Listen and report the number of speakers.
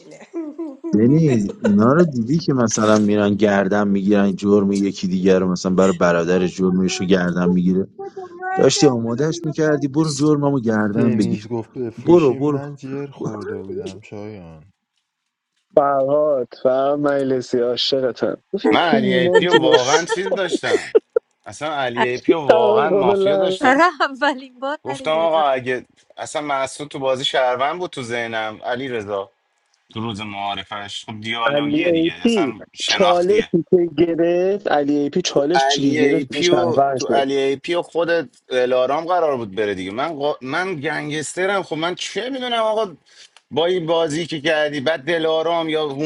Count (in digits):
6